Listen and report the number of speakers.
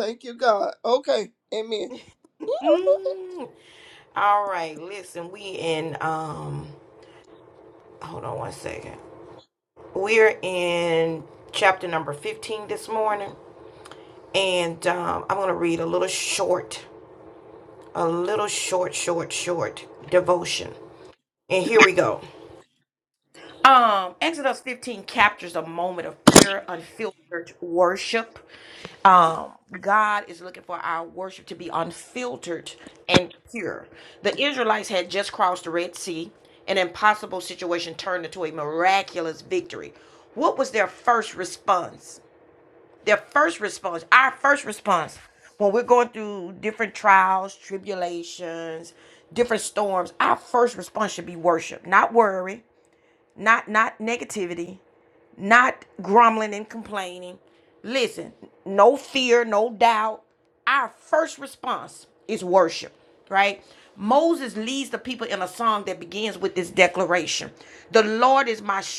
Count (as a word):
two